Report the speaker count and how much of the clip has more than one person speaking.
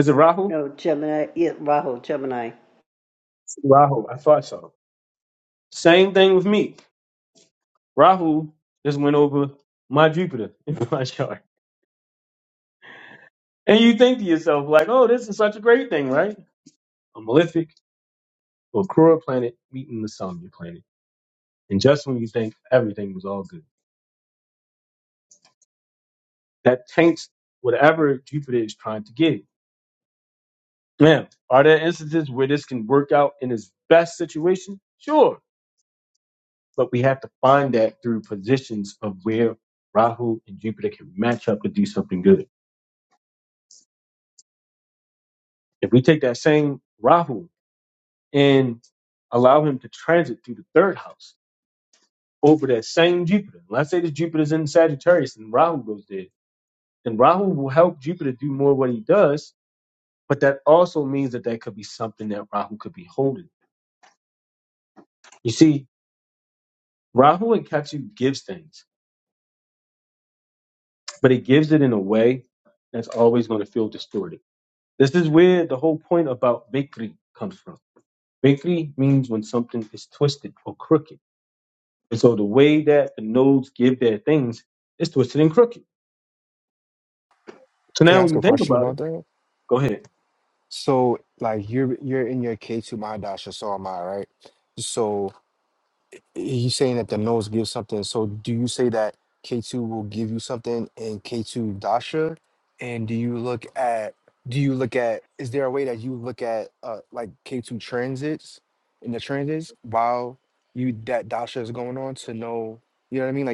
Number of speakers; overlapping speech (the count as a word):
three, about 1%